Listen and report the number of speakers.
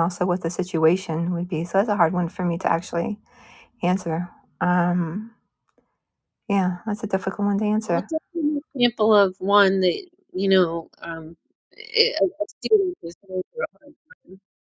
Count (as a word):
two